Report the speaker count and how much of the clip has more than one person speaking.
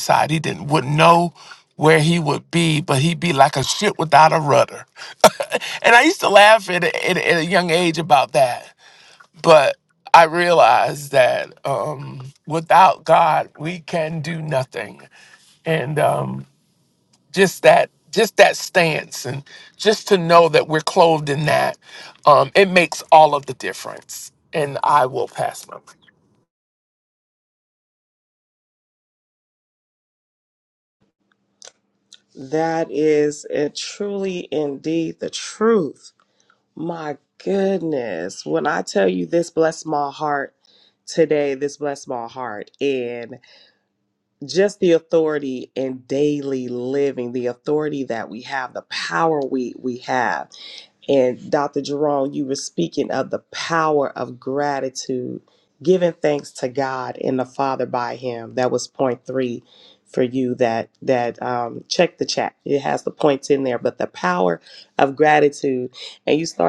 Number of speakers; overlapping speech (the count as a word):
two, no overlap